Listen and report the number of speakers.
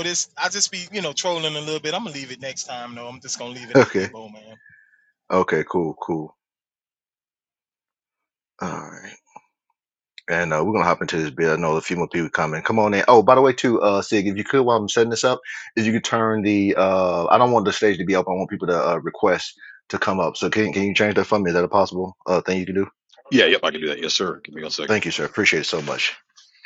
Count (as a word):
three